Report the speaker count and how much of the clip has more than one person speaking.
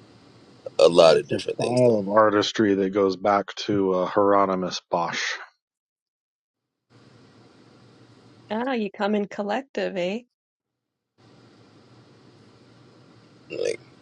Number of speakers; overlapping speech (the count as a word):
three, about 7%